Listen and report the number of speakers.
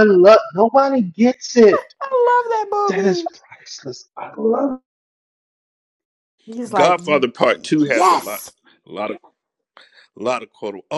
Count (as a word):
three